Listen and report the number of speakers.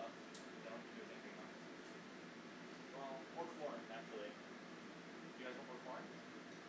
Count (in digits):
1